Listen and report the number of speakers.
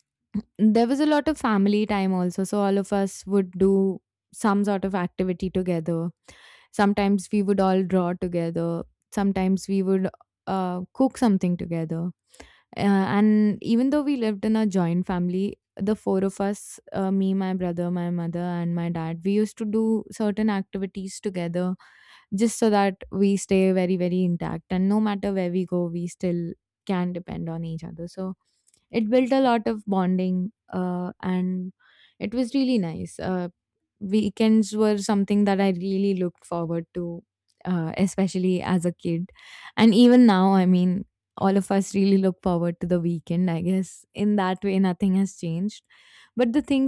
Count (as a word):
one